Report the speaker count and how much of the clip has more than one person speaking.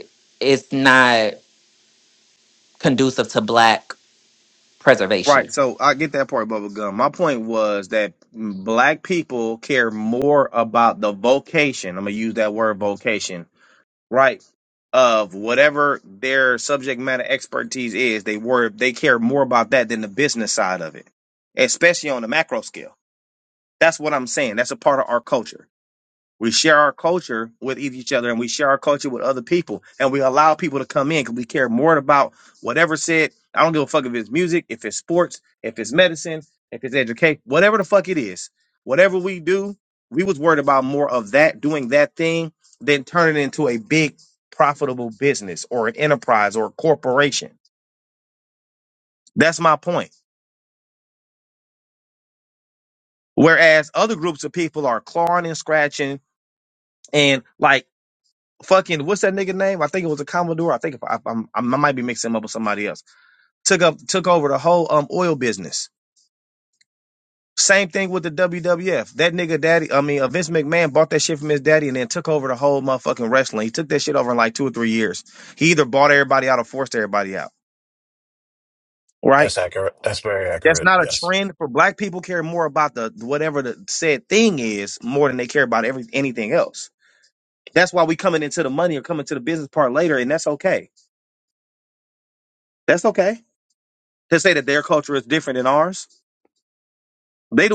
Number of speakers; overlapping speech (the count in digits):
3, about 1%